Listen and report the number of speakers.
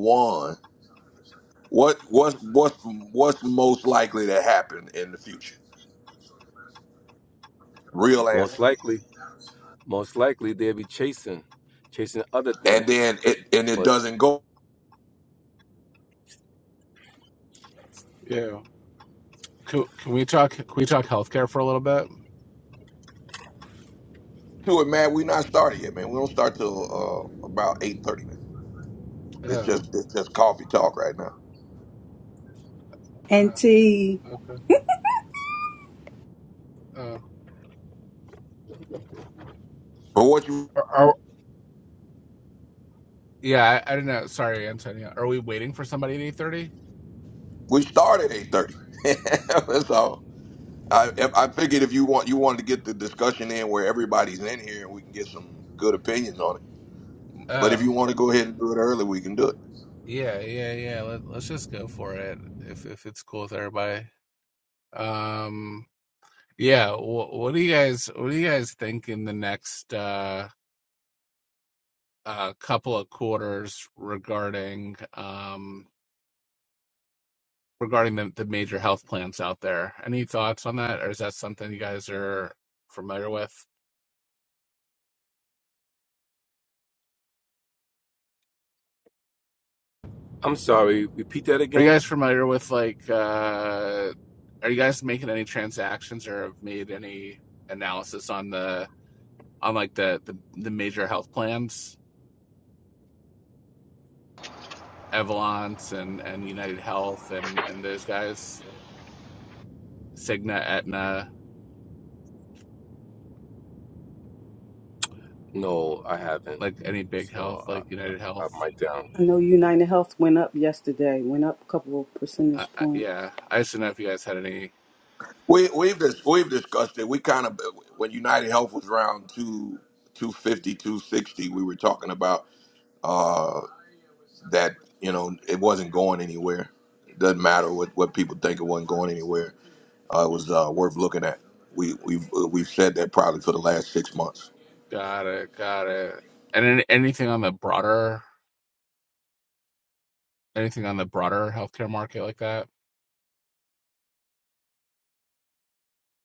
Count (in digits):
4